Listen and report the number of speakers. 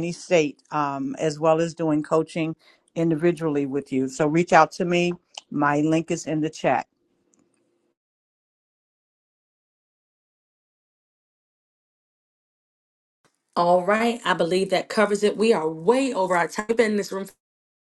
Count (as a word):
two